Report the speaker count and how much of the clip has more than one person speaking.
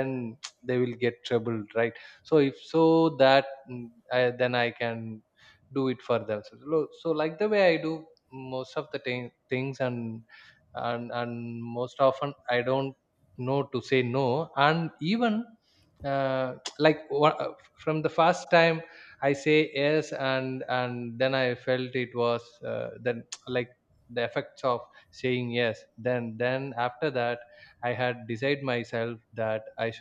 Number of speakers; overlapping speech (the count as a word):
one, no overlap